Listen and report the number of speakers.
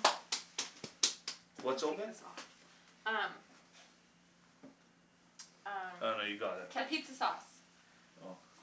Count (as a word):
two